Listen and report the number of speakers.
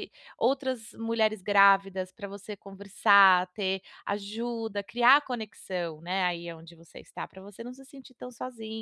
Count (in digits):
1